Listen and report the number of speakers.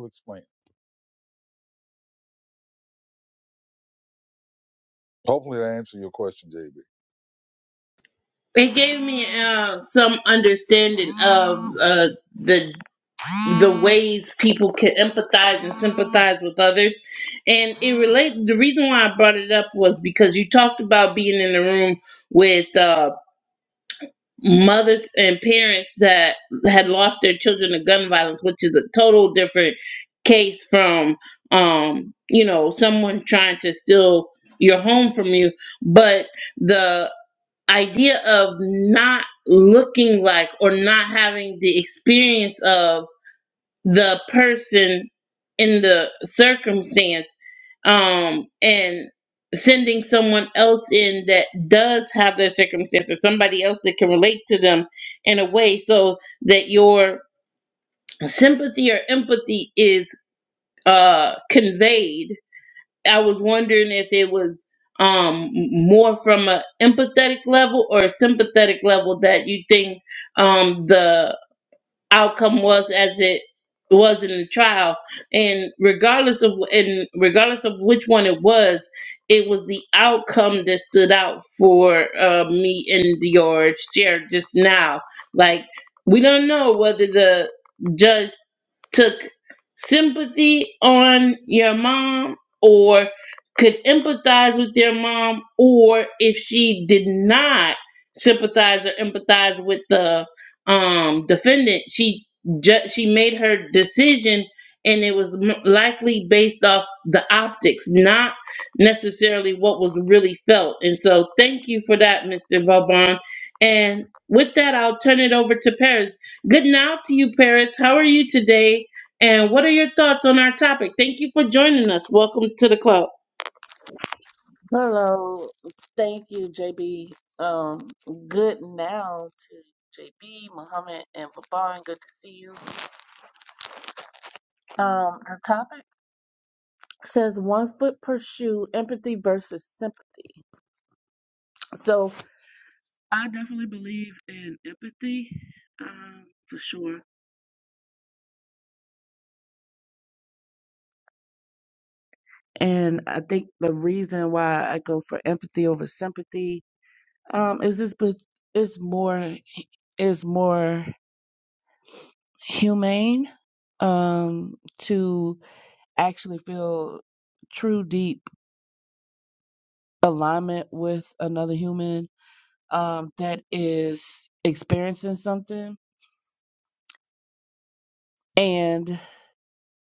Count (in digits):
3